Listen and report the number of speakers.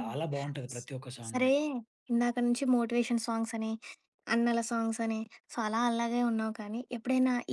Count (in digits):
2